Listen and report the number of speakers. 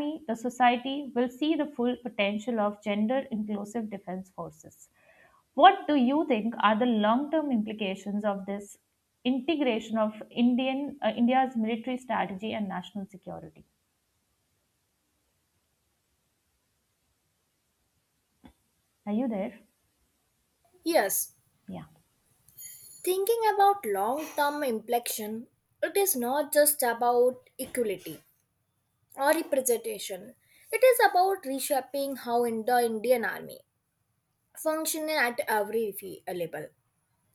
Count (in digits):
2